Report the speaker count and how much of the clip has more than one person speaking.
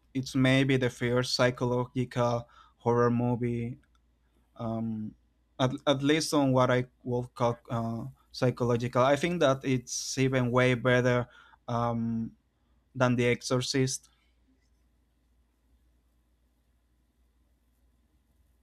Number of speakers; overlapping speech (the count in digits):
1, no overlap